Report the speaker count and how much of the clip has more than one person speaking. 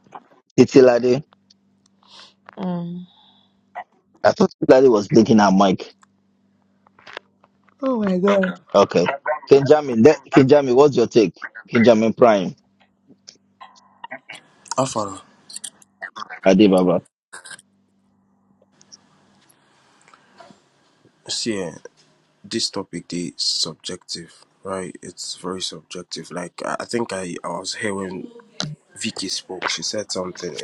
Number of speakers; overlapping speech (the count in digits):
3, no overlap